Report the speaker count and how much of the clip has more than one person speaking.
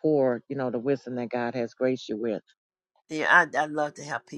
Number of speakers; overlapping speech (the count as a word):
two, no overlap